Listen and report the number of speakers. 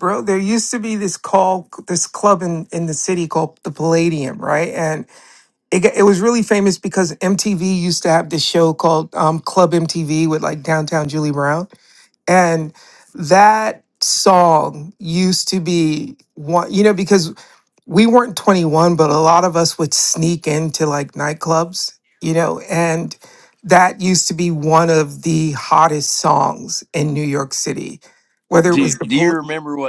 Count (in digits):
2